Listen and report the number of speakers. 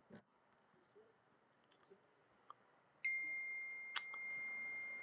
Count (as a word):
zero